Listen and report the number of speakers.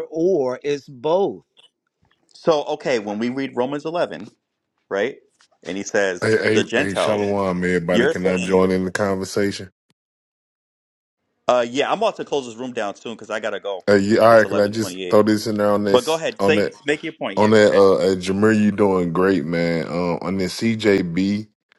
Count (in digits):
3